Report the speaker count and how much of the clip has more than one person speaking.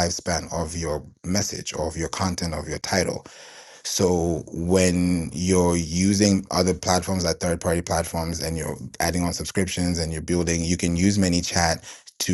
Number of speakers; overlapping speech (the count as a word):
one, no overlap